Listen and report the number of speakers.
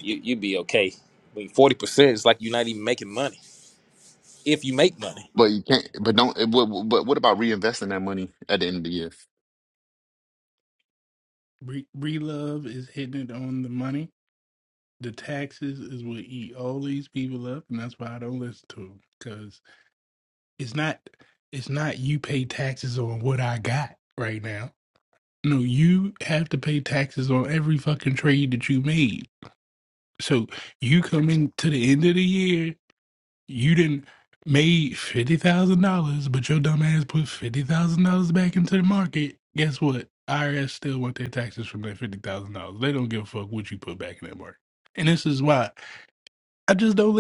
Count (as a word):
three